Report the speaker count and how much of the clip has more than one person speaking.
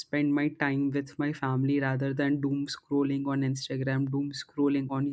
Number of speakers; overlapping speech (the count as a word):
one, no overlap